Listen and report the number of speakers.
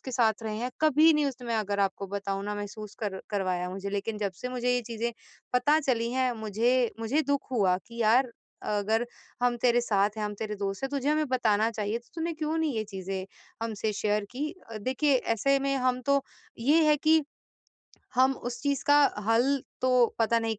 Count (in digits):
1